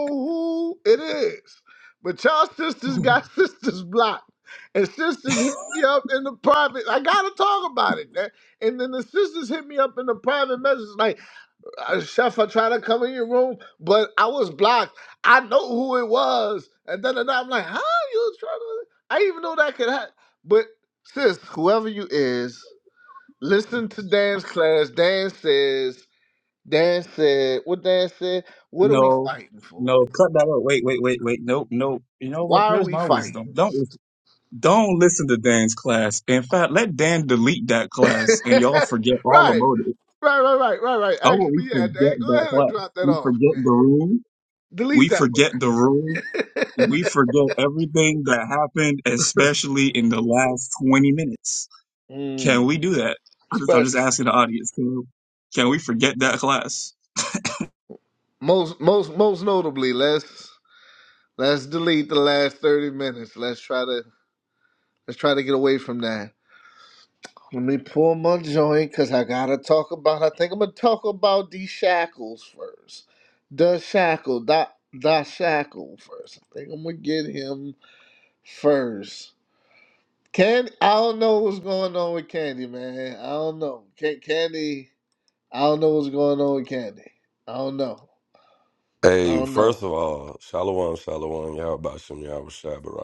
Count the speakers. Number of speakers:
3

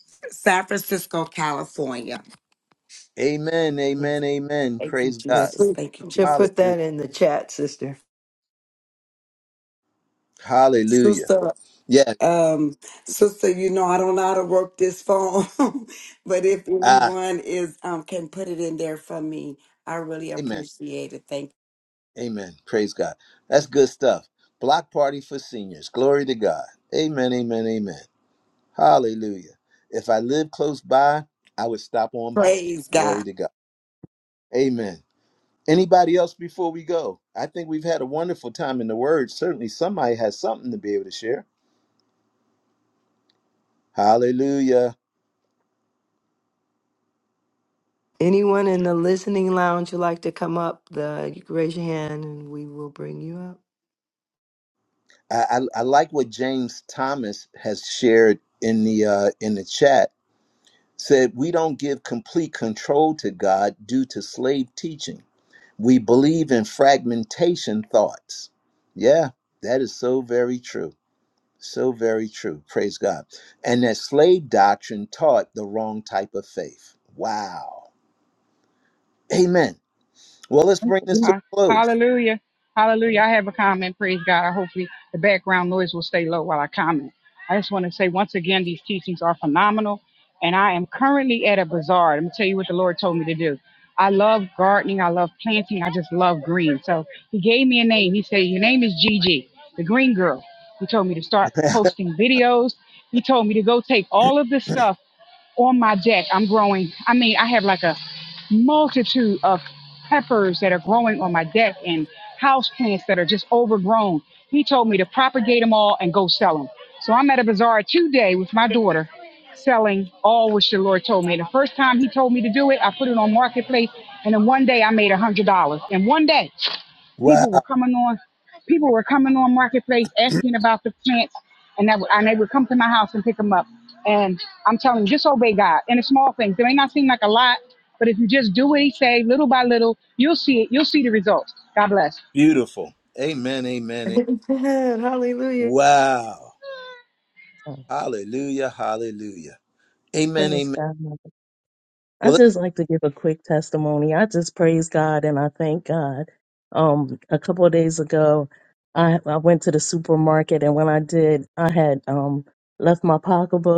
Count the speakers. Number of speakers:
5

